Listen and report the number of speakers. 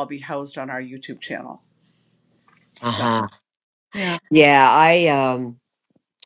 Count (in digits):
2